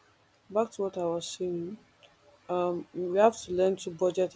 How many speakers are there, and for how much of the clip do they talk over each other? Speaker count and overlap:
one, no overlap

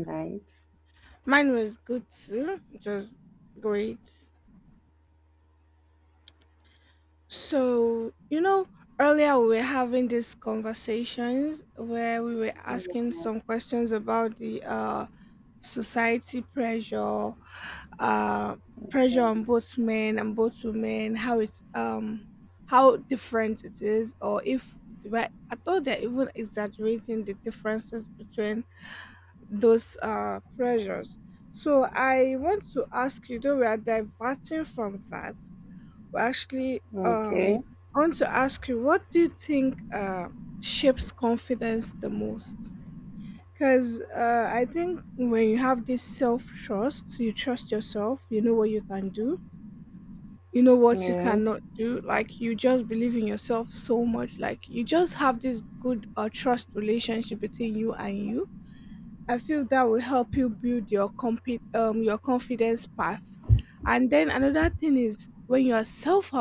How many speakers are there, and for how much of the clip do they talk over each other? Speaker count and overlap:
two, about 2%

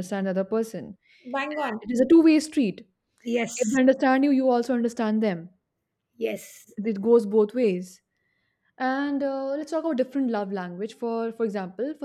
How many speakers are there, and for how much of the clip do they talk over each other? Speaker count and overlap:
two, no overlap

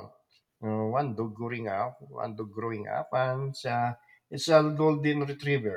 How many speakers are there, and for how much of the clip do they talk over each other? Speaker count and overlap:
one, no overlap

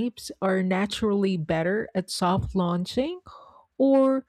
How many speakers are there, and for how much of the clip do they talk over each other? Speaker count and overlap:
one, no overlap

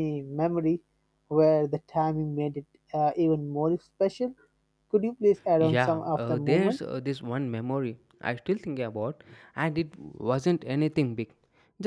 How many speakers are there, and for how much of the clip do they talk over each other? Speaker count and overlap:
two, about 10%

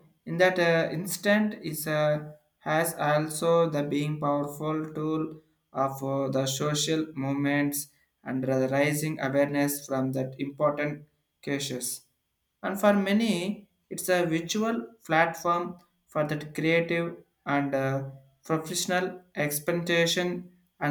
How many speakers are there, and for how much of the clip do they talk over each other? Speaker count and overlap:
one, no overlap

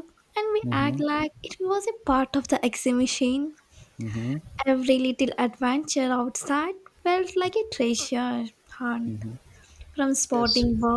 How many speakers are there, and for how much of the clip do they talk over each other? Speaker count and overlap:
two, about 7%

